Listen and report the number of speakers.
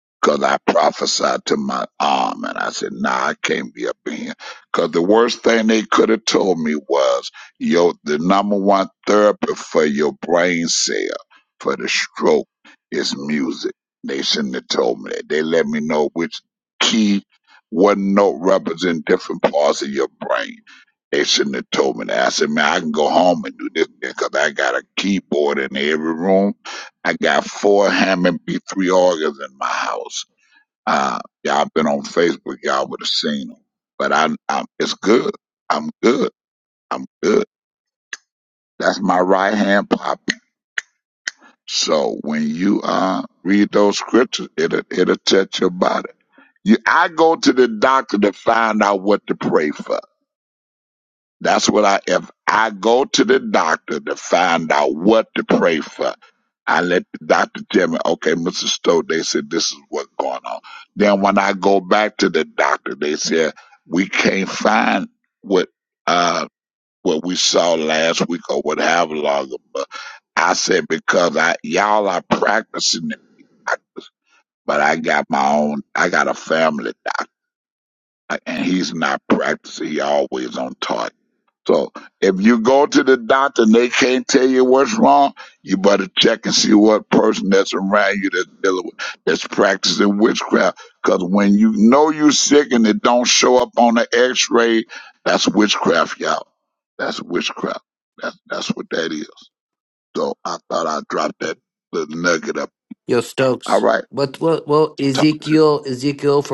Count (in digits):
2